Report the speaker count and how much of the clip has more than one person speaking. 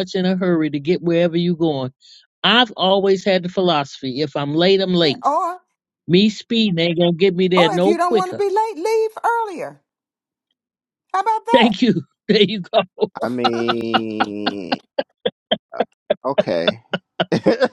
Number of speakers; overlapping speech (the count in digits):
3, about 7%